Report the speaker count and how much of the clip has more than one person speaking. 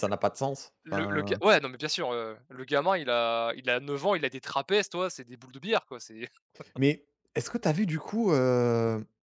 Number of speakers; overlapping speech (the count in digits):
2, about 2%